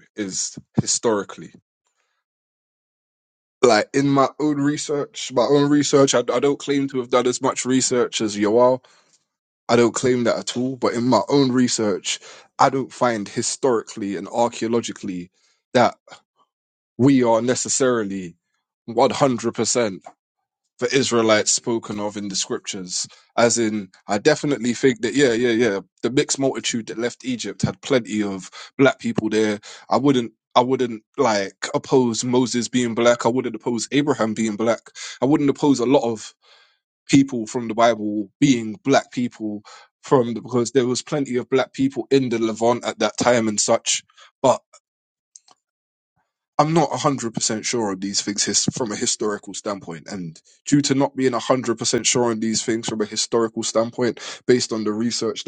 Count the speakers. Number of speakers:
one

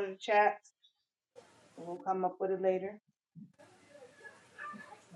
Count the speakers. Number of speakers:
one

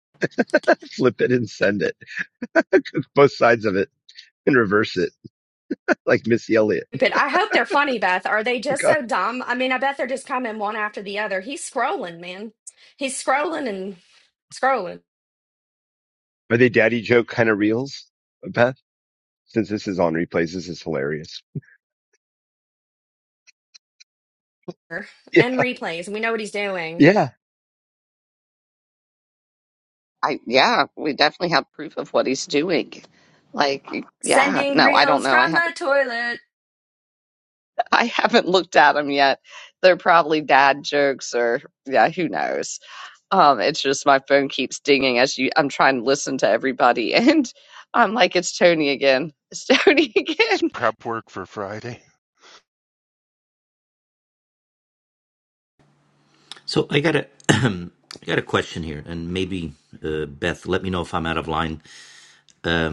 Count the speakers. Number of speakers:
five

